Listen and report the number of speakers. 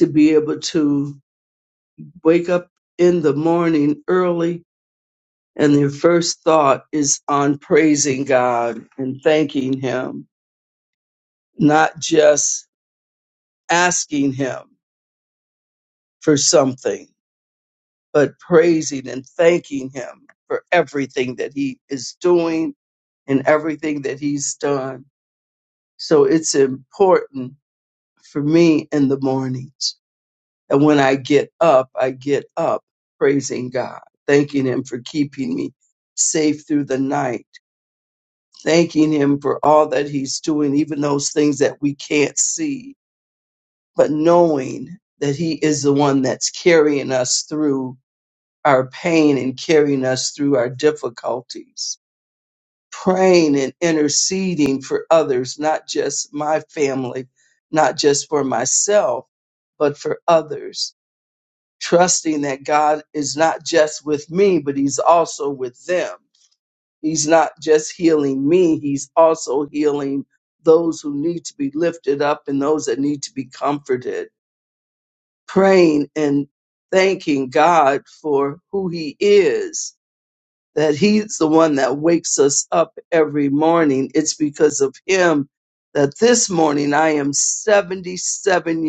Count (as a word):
one